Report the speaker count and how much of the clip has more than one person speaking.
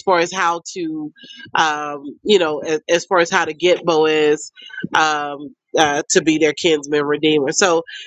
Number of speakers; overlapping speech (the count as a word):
one, no overlap